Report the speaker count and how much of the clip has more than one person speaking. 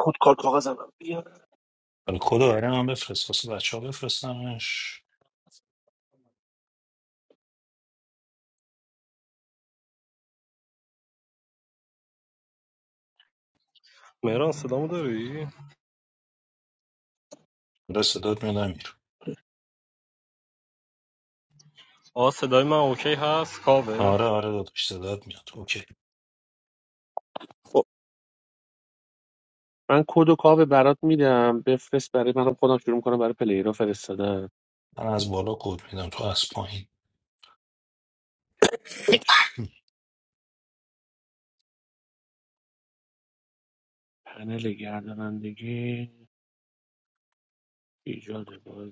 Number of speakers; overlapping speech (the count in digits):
3, under 1%